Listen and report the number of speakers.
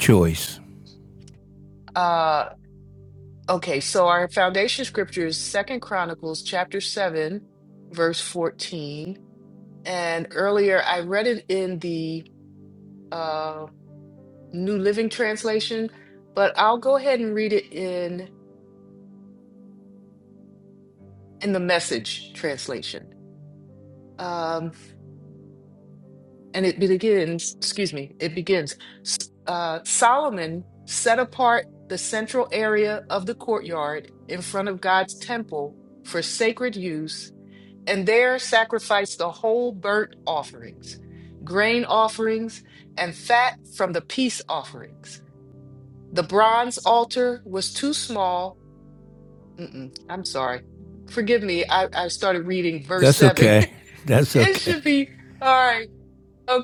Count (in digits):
2